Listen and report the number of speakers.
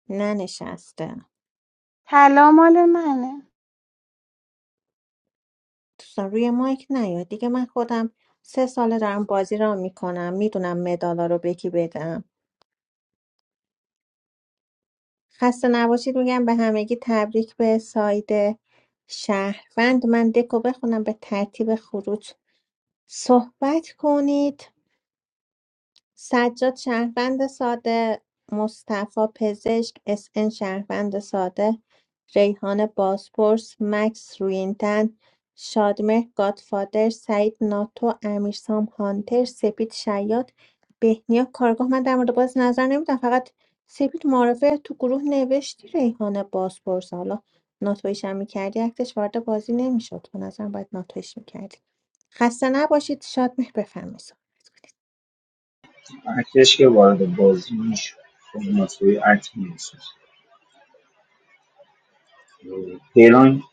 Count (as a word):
three